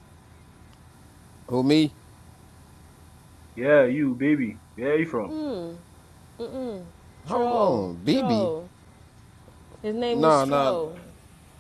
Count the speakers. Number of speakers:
3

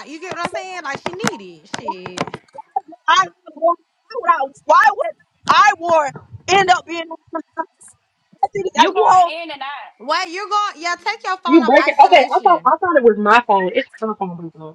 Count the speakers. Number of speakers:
4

